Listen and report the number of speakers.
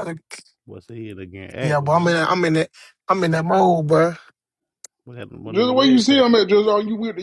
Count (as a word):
three